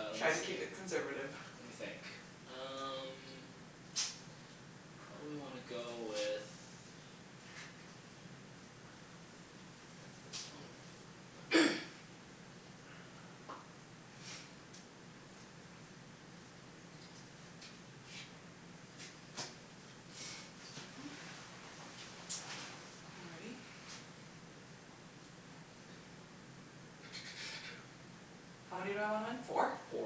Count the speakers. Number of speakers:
2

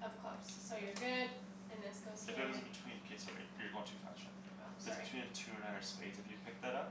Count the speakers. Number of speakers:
2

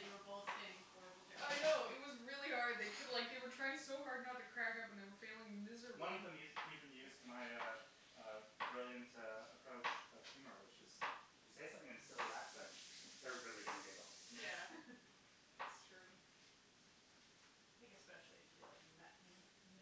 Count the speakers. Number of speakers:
3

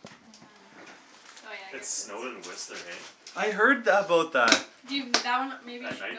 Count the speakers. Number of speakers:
3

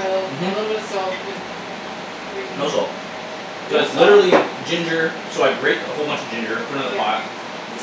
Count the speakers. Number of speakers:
2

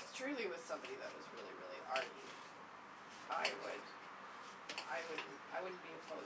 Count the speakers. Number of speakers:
1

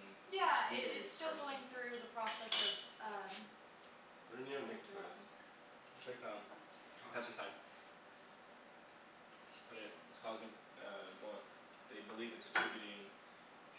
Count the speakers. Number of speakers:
3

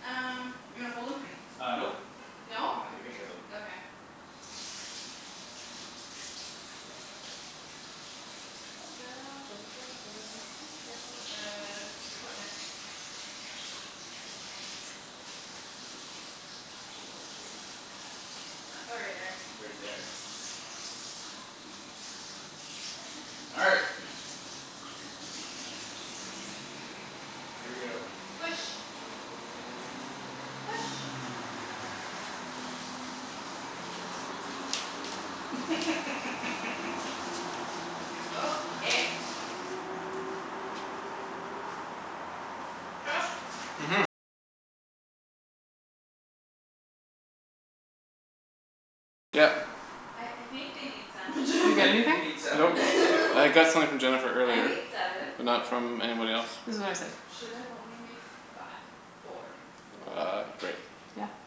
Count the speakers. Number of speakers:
4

